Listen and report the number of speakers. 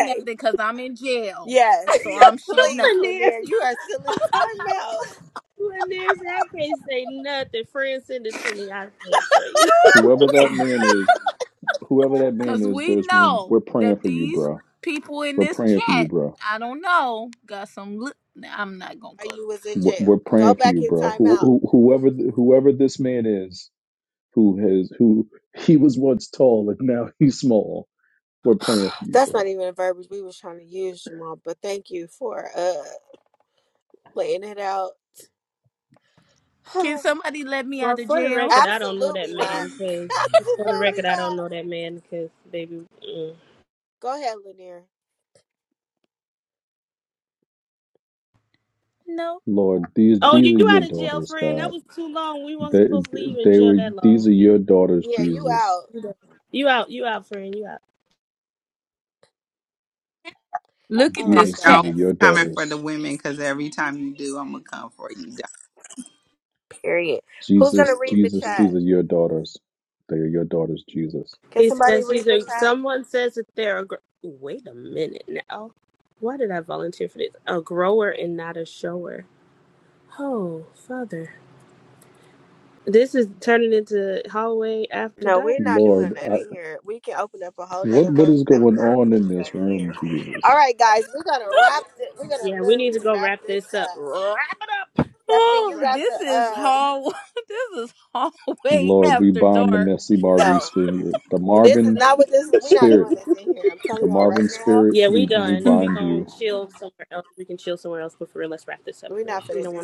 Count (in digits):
5